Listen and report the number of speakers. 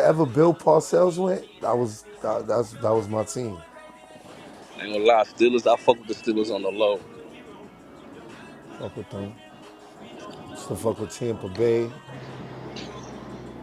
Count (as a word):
two